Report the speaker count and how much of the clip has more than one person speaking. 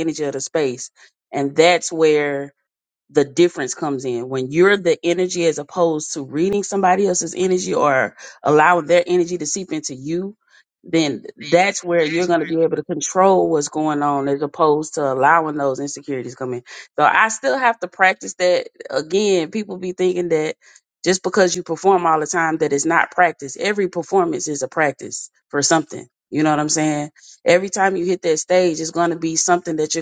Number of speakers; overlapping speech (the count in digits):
1, no overlap